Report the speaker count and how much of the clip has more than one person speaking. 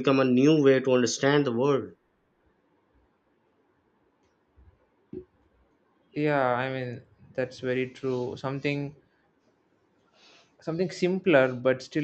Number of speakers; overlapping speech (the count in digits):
2, no overlap